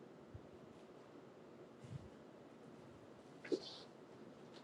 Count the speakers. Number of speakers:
zero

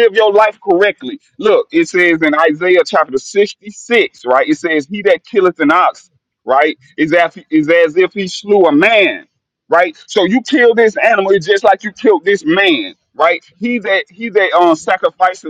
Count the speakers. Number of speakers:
one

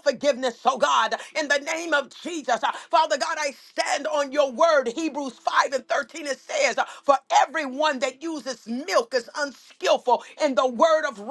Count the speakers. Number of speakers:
one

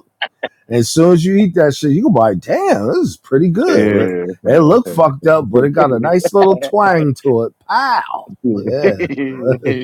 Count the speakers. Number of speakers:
two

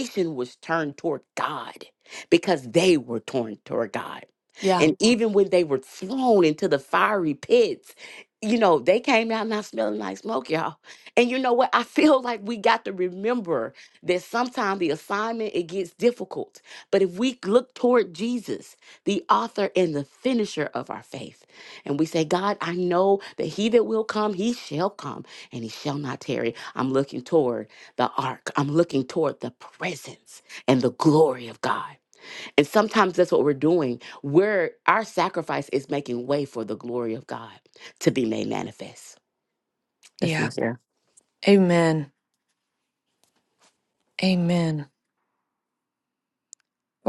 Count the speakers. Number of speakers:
two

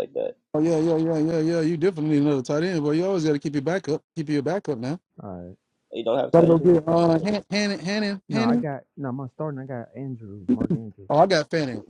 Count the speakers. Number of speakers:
three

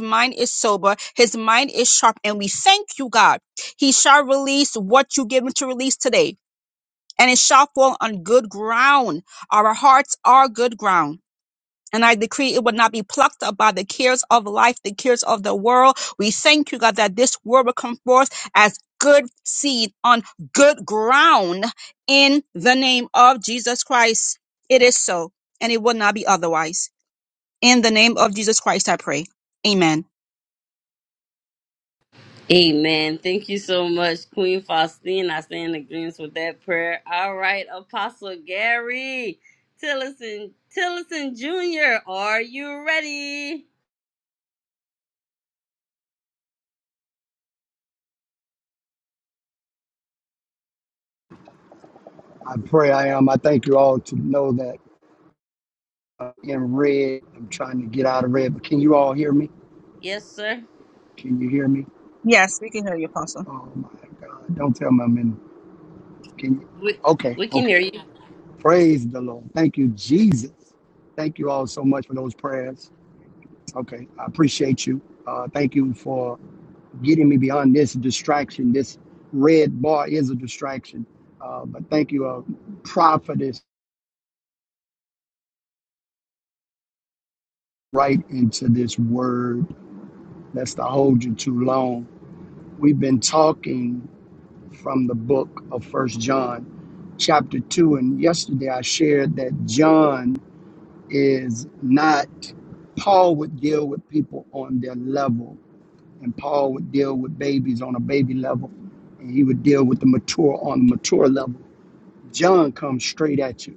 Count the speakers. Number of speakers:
three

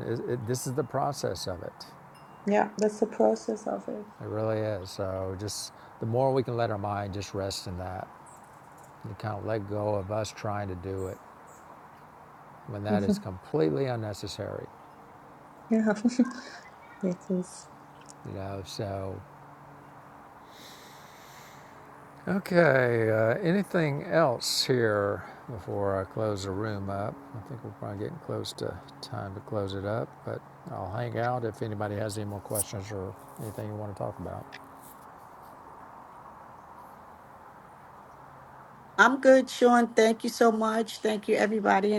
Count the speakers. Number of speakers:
three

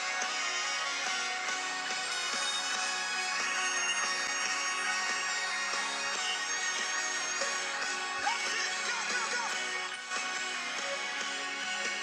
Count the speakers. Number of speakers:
zero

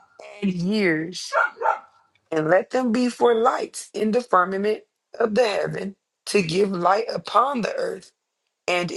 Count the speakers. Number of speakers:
one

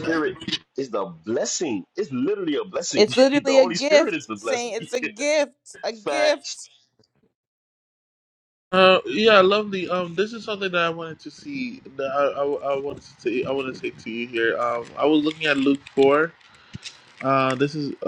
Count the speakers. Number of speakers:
three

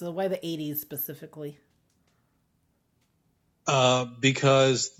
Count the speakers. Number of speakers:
two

